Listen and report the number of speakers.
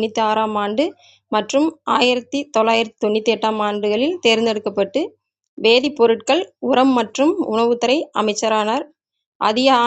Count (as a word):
one